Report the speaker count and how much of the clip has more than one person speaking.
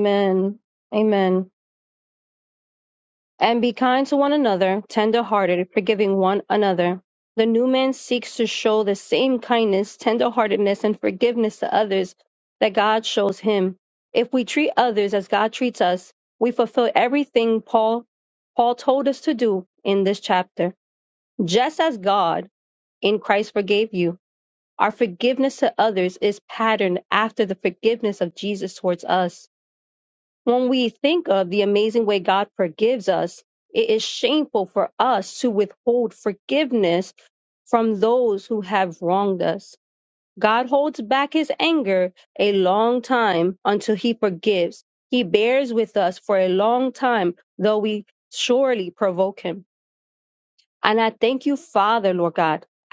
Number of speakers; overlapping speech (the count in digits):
1, no overlap